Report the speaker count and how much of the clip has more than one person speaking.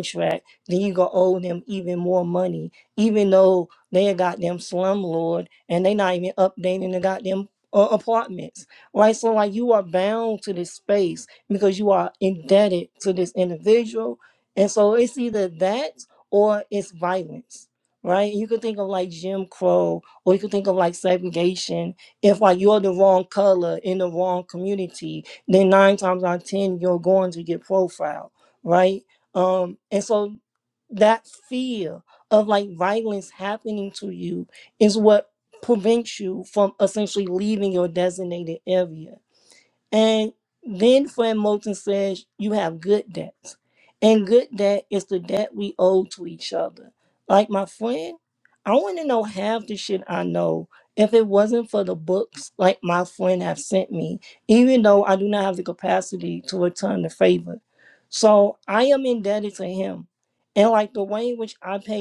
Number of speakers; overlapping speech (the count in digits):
1, no overlap